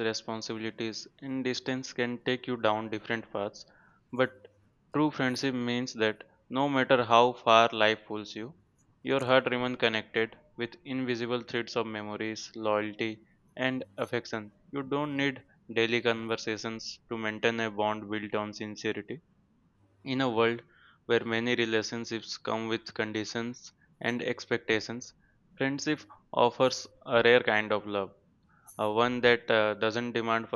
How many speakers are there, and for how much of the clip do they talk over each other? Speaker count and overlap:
one, no overlap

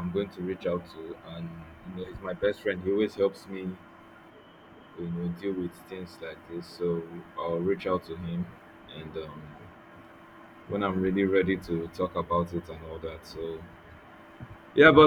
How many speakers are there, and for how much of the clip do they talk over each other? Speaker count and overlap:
one, no overlap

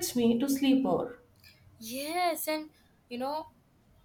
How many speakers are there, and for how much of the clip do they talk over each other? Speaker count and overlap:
two, no overlap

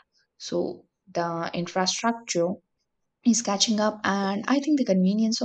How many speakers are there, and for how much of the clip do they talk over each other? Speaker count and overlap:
one, no overlap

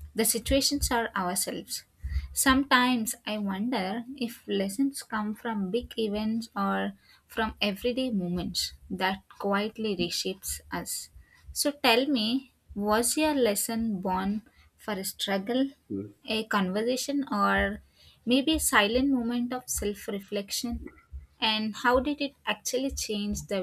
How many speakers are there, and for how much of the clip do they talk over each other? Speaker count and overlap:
one, no overlap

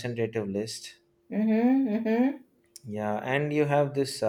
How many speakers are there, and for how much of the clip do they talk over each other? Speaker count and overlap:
two, no overlap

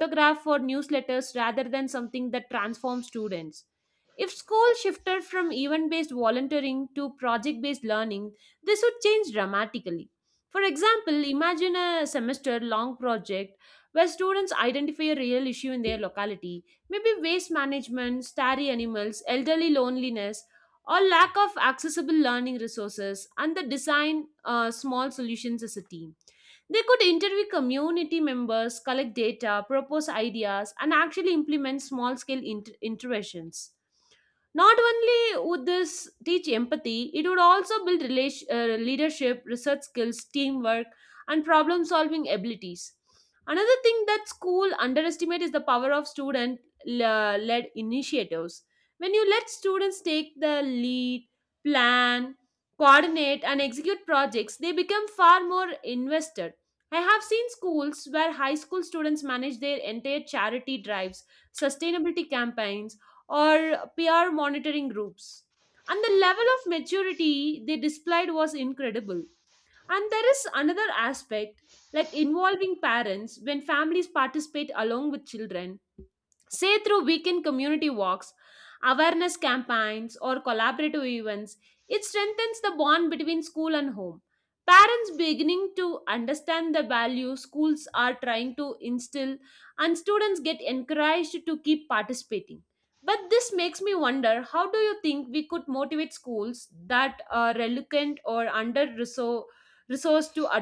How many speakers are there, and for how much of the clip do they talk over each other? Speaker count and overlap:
one, no overlap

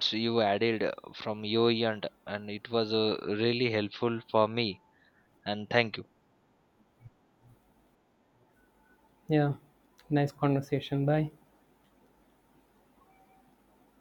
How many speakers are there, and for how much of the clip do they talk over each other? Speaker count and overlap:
two, no overlap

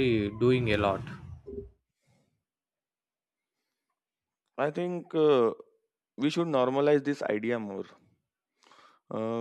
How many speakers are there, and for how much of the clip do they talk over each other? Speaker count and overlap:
two, no overlap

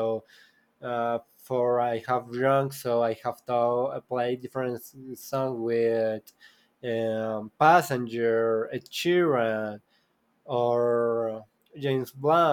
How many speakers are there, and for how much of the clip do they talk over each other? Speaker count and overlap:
one, no overlap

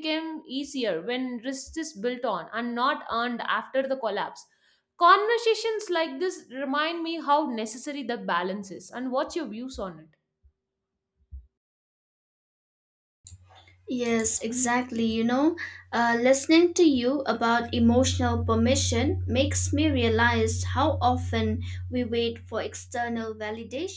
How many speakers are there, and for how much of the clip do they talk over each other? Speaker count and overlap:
two, no overlap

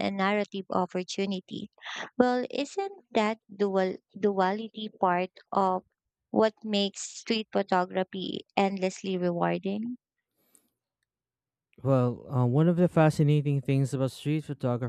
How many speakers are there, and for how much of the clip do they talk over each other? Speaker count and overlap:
two, no overlap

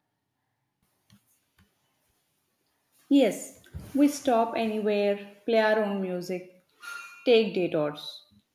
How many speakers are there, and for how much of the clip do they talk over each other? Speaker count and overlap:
one, no overlap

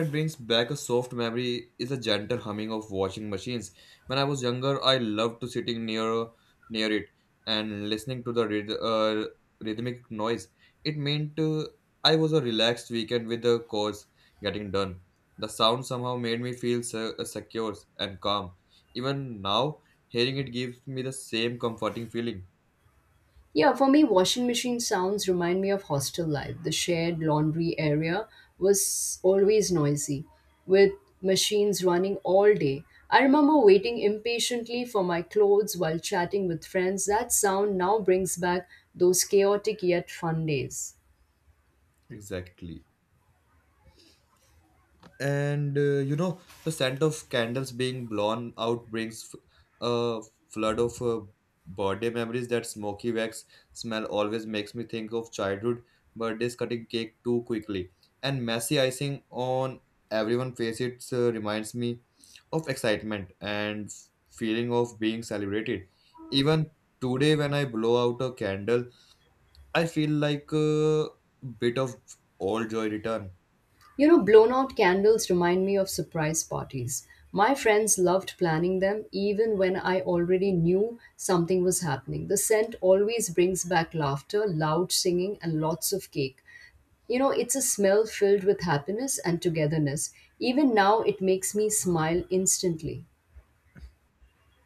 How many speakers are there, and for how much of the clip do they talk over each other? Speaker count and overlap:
two, no overlap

